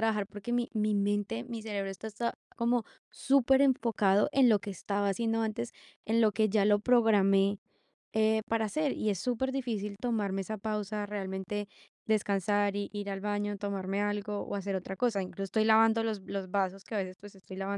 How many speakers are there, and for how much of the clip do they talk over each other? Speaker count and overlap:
one, no overlap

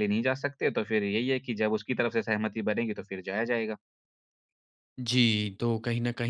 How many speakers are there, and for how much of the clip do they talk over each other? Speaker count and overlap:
two, no overlap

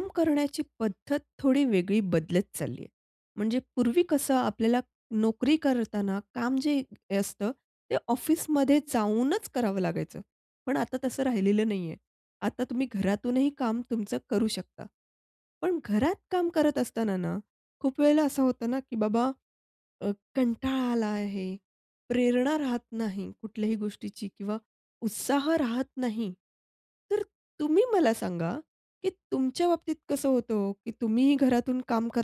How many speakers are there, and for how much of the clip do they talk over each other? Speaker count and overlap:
one, no overlap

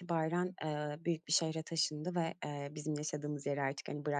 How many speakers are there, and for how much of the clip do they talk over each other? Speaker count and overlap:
one, no overlap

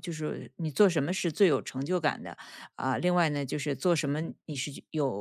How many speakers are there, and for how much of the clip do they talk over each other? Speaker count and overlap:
one, no overlap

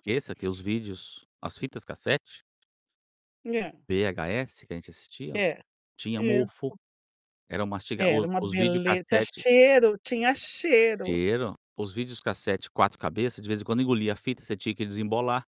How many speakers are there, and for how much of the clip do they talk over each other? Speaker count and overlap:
two, about 14%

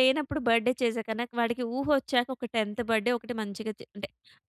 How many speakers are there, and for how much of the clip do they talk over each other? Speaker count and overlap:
one, no overlap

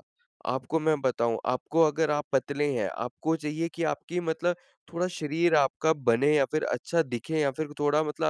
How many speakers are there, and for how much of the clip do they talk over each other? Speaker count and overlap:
one, no overlap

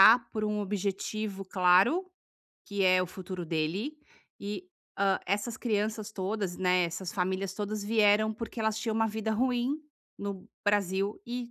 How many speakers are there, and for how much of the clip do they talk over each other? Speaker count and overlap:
one, no overlap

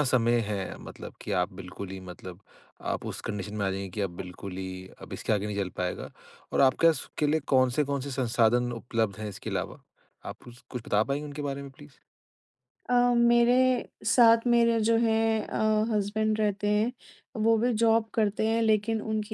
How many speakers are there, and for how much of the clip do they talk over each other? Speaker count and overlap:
two, no overlap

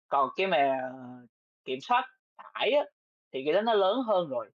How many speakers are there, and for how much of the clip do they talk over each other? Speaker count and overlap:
one, no overlap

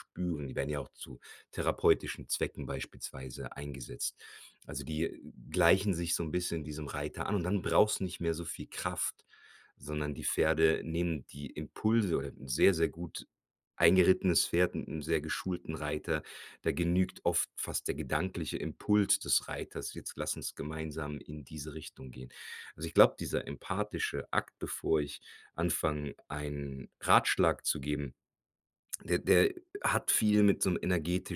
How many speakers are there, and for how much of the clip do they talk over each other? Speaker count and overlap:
one, no overlap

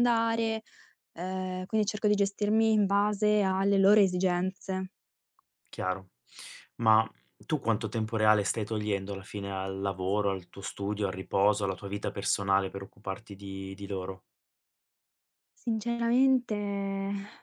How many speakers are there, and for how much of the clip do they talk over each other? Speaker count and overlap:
two, no overlap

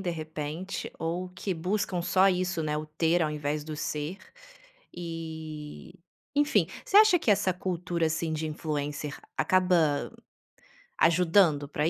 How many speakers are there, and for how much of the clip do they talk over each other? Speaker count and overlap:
one, no overlap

